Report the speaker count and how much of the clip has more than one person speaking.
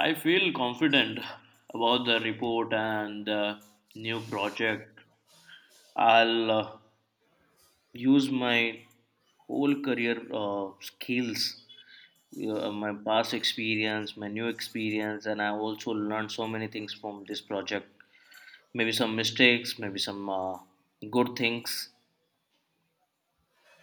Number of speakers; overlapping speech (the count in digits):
1, no overlap